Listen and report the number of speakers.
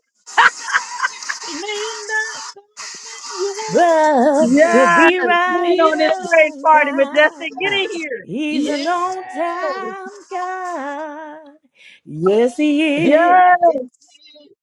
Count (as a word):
three